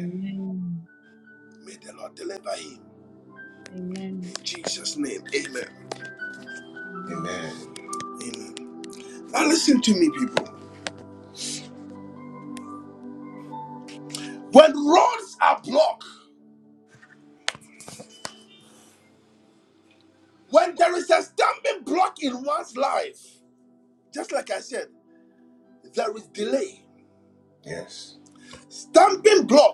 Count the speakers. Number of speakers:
3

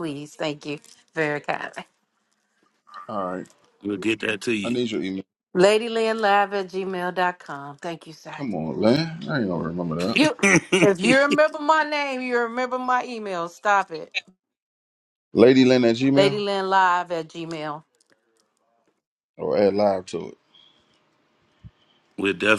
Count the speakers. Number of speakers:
3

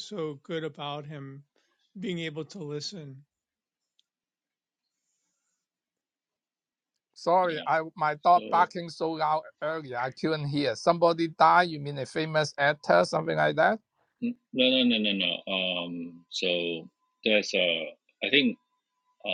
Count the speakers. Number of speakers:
3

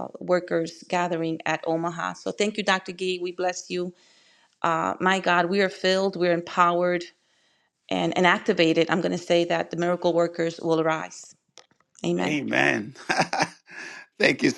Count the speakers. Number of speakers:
2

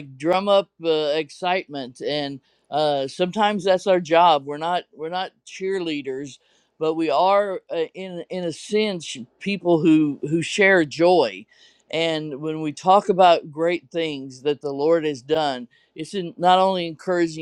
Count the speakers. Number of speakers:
1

